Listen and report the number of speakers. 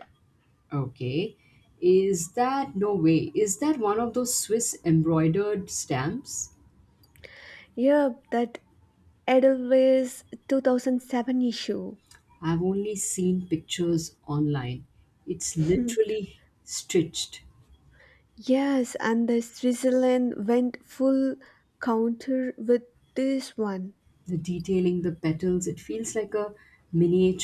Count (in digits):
2